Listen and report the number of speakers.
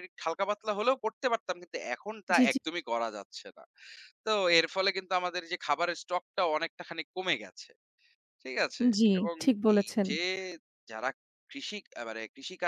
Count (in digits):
2